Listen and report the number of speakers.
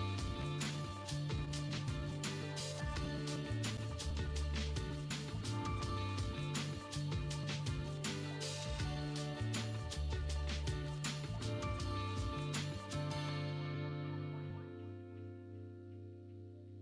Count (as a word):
zero